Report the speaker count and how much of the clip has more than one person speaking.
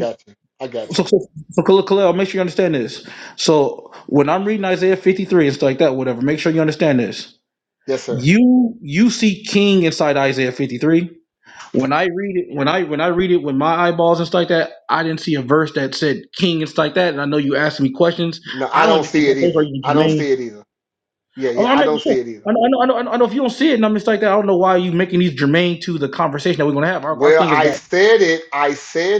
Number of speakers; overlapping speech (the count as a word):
two, about 12%